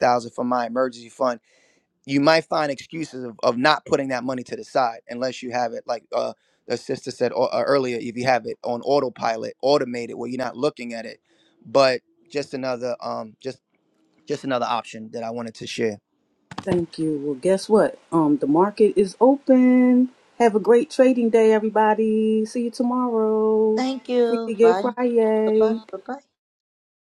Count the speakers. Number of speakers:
three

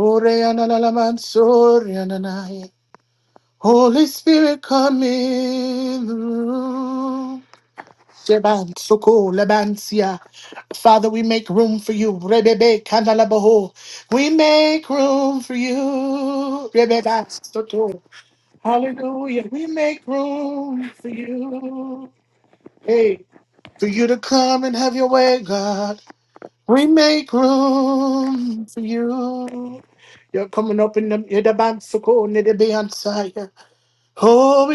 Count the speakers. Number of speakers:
one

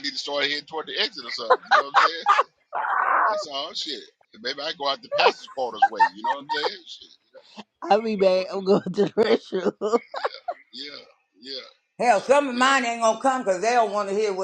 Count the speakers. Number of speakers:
three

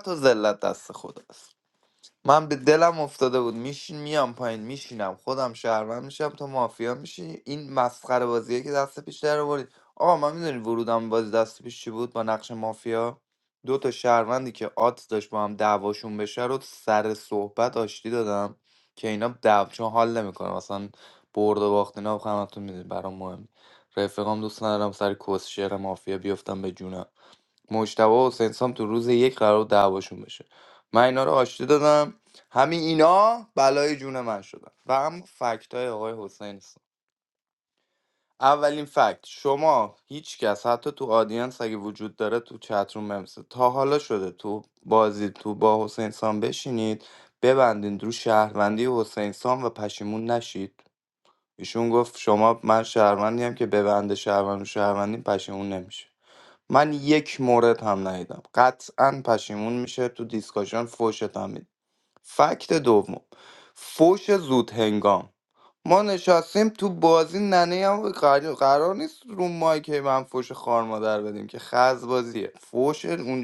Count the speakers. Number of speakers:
one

